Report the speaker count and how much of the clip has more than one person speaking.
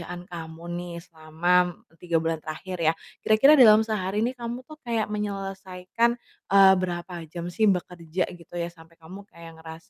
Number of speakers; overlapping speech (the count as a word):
one, no overlap